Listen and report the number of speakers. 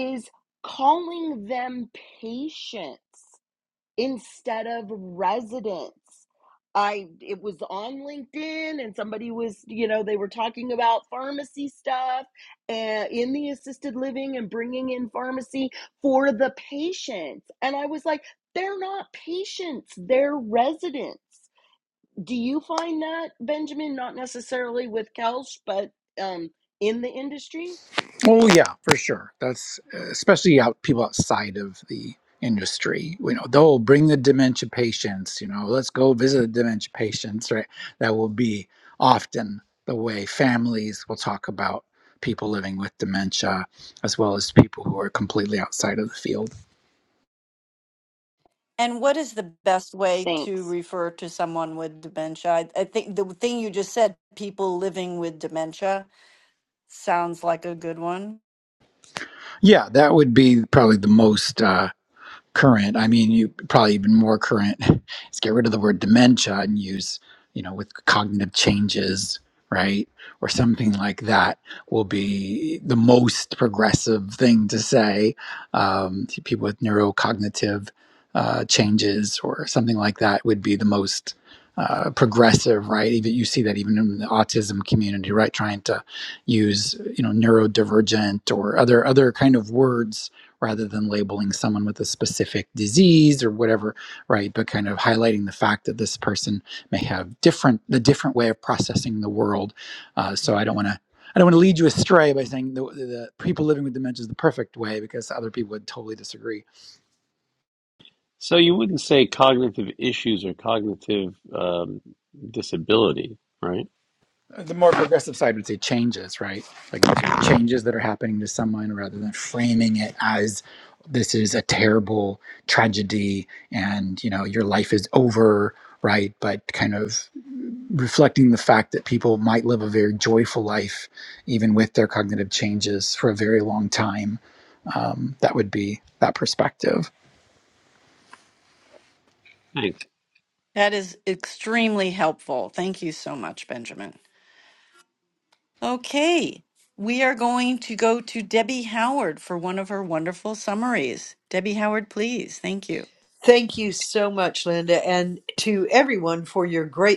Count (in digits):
5